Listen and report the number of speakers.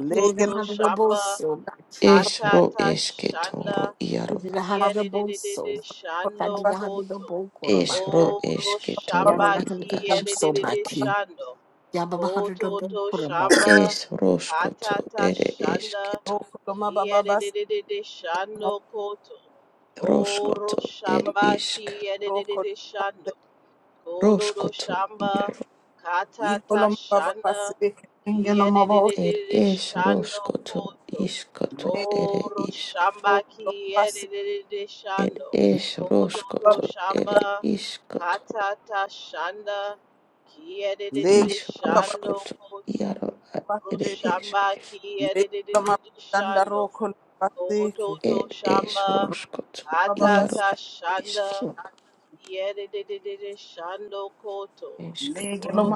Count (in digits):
4